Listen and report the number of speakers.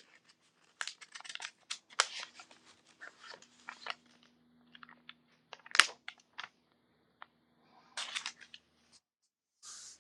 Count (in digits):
0